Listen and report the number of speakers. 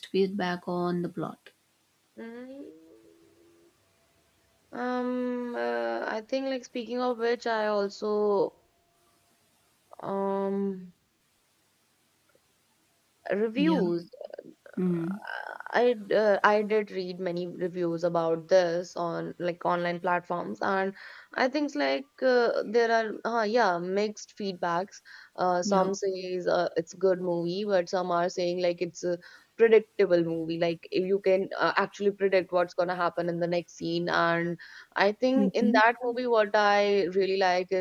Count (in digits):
2